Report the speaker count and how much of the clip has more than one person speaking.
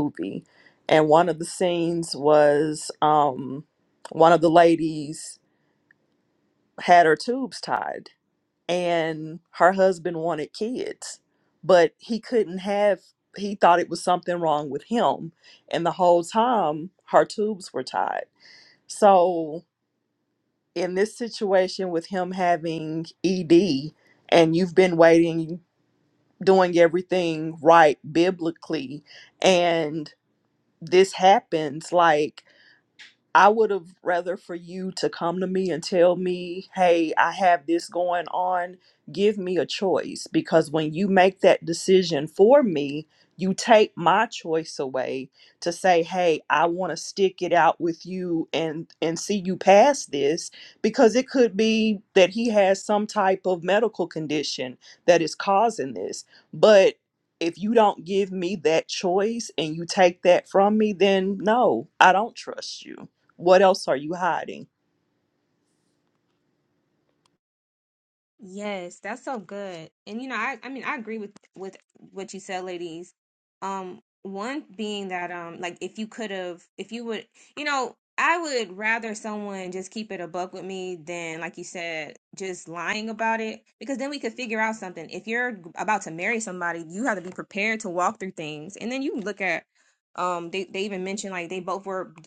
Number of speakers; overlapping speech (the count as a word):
two, no overlap